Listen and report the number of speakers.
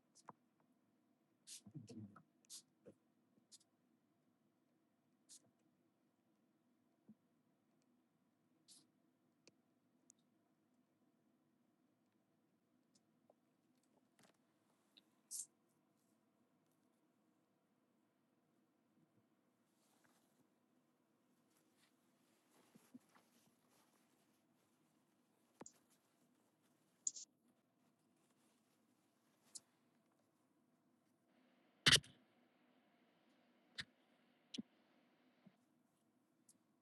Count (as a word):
zero